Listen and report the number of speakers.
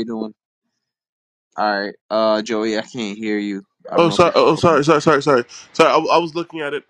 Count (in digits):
2